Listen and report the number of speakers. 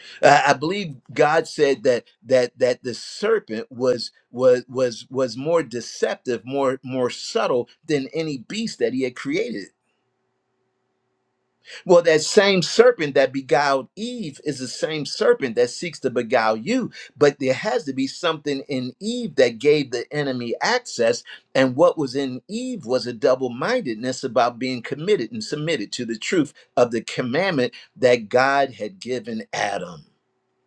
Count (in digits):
1